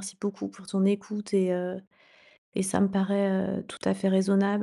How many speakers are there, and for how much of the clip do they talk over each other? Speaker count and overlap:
one, no overlap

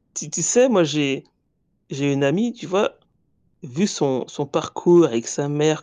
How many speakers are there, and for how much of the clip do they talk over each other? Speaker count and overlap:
one, no overlap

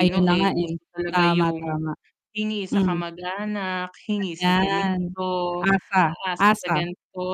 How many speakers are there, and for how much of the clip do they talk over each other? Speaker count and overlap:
two, about 47%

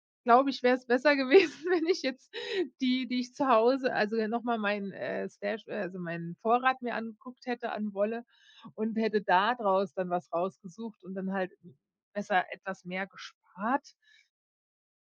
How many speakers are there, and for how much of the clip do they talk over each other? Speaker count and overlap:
one, no overlap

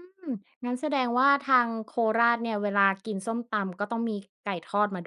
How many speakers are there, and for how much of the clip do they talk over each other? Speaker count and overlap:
one, no overlap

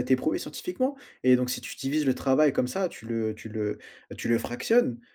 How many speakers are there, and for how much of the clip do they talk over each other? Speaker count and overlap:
one, no overlap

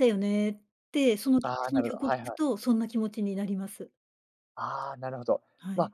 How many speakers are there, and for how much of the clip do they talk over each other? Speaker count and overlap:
two, about 18%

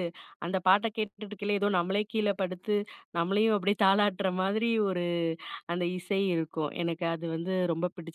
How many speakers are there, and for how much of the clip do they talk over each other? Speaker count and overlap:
one, no overlap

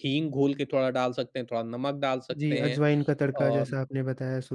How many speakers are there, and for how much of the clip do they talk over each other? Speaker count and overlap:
two, about 20%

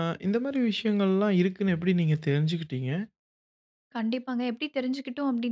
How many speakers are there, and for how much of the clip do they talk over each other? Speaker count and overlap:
two, no overlap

